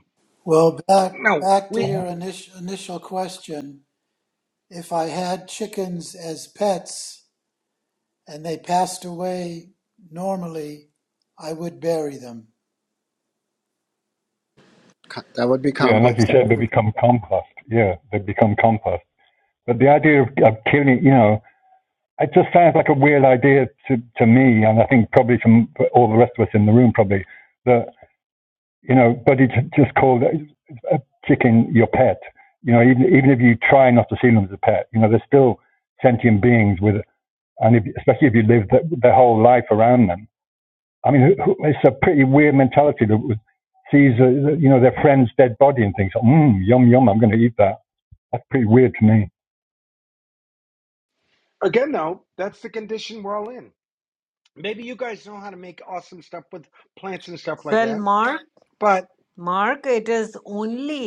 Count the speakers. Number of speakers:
5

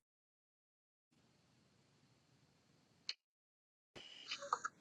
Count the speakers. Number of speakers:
0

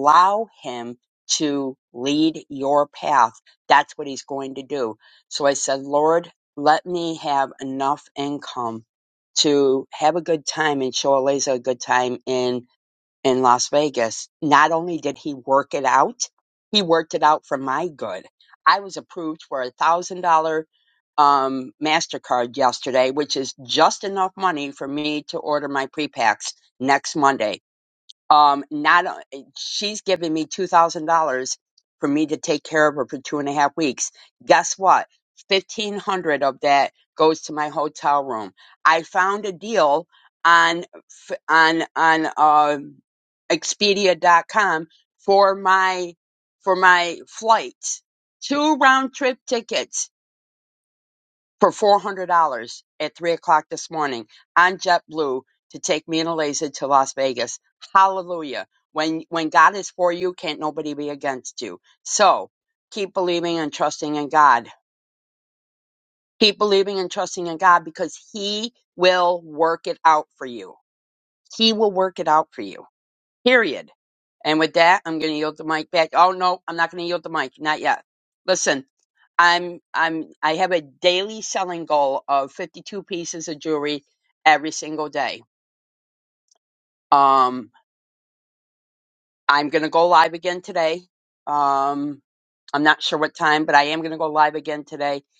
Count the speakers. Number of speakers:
1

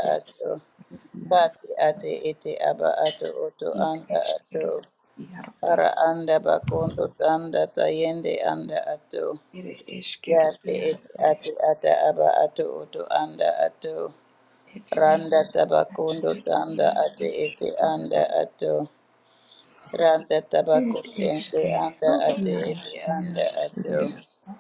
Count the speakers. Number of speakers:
2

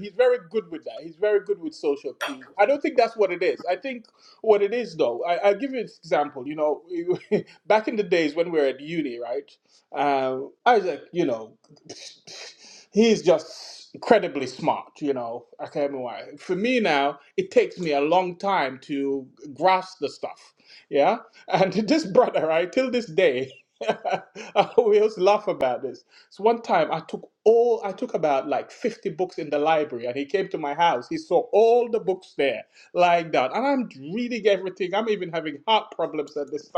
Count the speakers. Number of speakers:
1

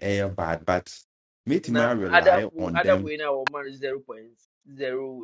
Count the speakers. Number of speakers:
2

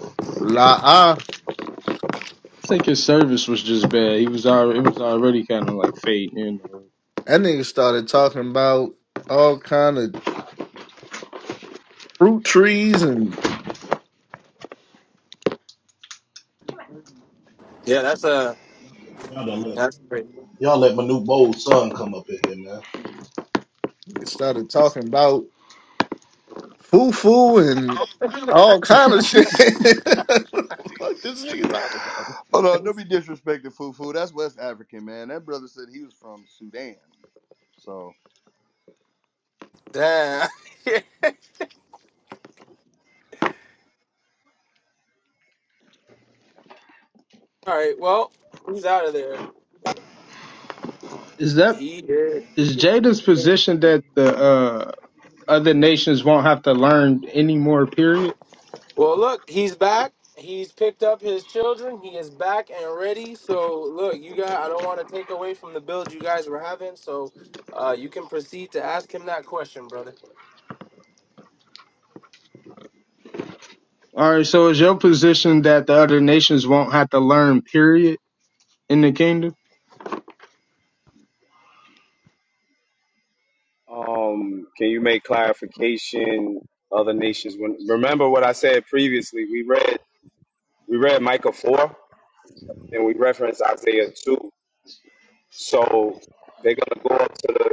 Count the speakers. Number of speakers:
6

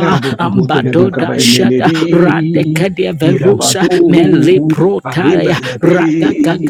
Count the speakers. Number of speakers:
2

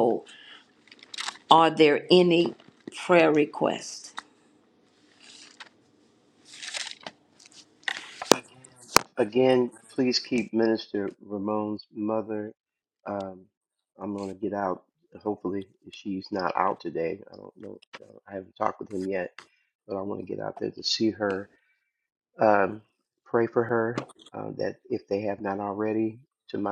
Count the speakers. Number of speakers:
2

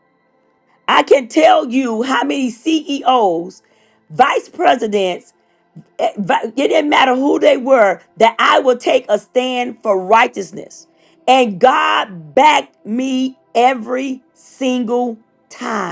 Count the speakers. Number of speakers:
1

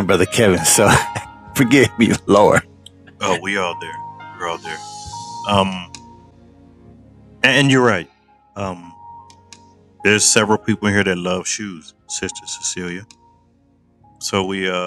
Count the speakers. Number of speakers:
2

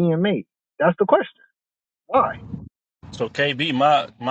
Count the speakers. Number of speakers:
2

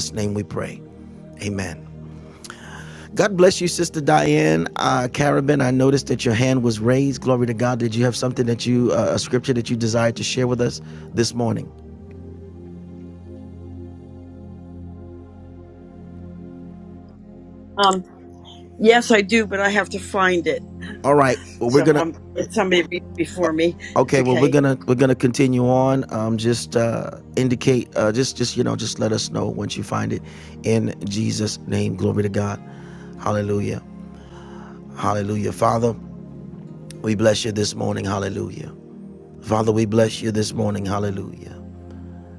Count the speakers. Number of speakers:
2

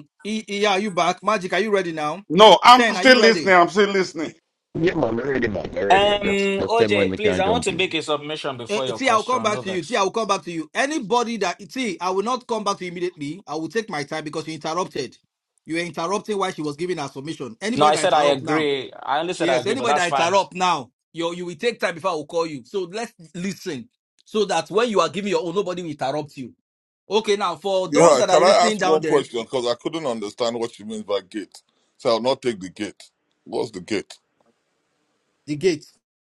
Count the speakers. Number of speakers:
5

